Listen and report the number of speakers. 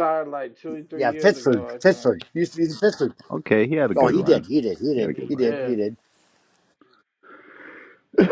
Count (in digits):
3